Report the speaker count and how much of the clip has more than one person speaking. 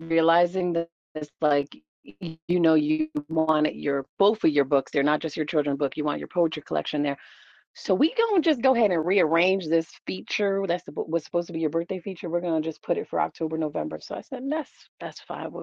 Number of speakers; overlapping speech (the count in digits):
1, no overlap